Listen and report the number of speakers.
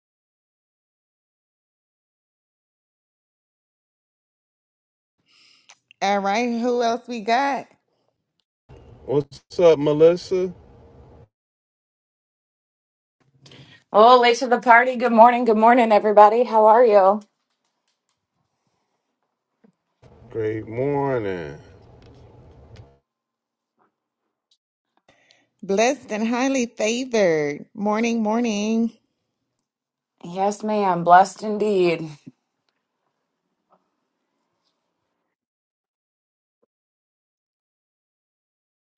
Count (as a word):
three